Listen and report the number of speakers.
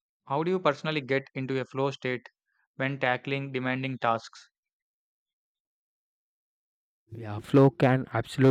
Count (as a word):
two